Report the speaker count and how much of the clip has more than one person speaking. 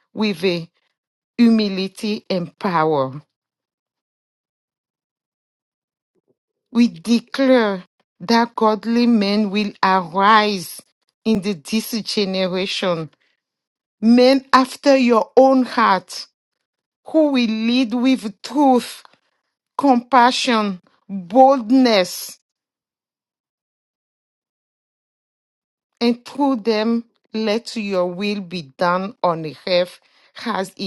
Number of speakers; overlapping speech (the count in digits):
1, no overlap